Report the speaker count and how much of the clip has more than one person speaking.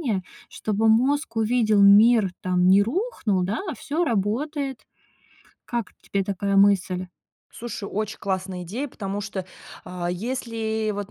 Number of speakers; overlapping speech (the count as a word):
two, no overlap